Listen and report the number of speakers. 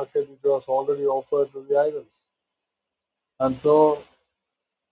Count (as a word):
one